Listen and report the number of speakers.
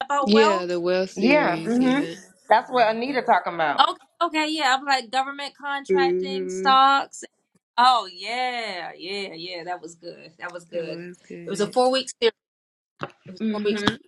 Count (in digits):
3